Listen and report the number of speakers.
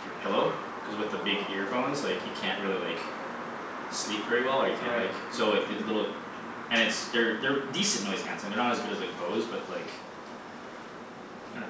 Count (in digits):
1